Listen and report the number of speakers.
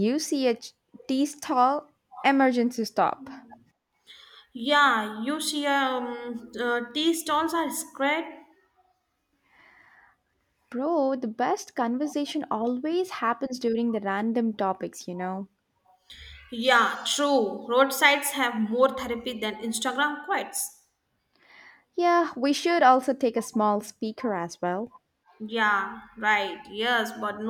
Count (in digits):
2